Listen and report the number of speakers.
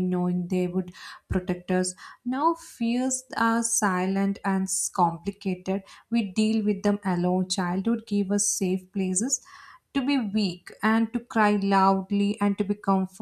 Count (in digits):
1